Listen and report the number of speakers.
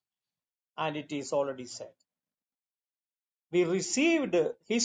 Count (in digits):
1